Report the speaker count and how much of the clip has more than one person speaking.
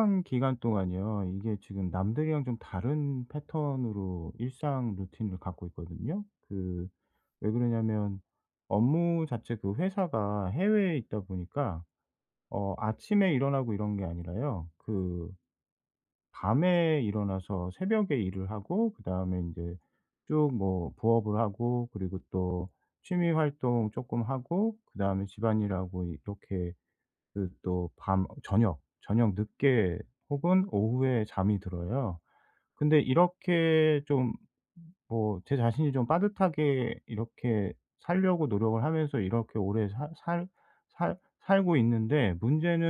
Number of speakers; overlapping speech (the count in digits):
1, no overlap